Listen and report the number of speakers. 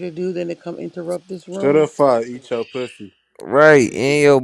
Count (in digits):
3